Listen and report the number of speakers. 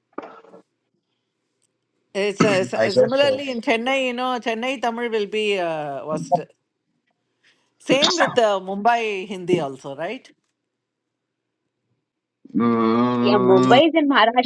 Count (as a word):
three